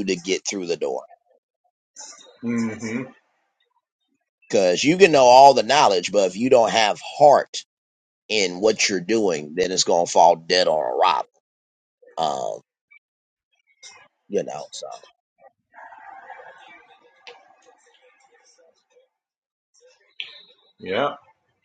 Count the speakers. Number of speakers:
2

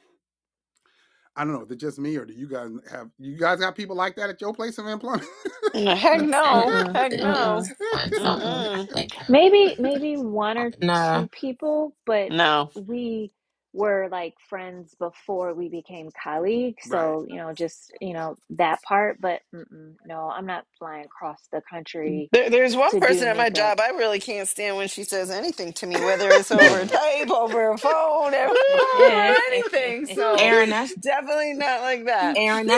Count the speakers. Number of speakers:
4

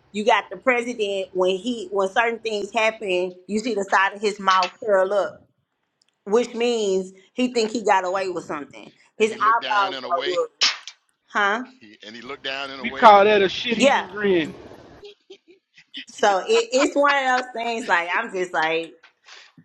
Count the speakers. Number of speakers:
3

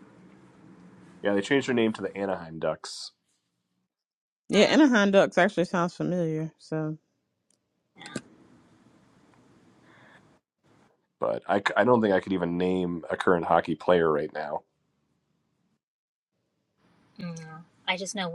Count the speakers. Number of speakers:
3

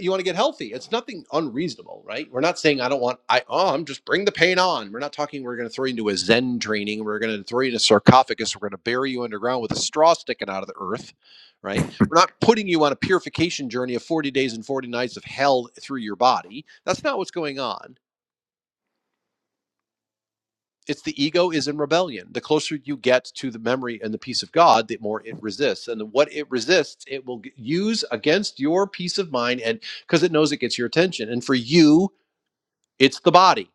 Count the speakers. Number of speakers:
1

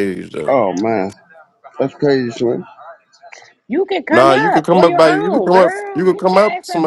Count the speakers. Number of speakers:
3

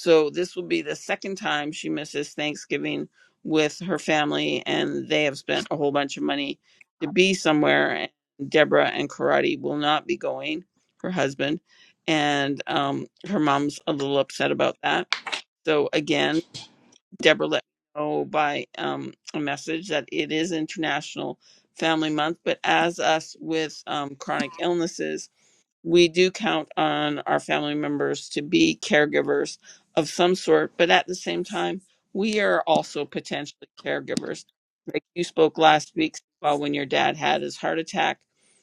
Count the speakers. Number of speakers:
1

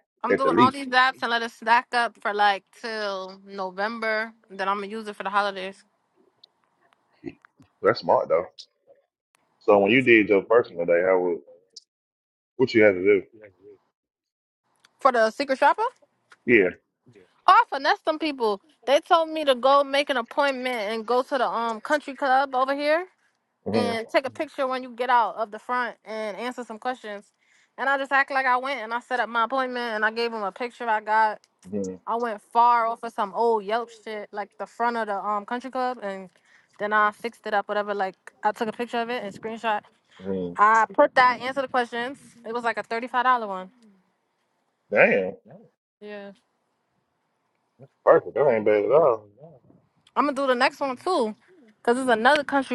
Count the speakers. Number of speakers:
2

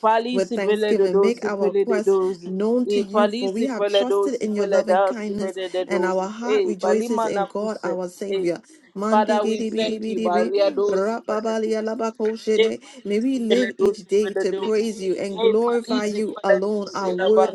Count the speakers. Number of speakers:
2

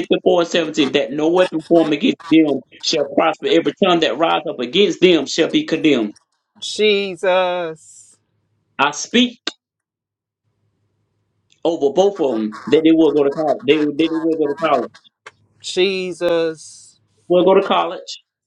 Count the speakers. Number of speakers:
2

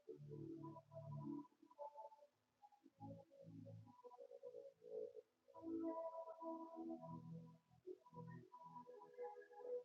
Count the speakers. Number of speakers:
0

